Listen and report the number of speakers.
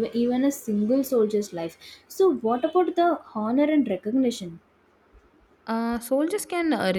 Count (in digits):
2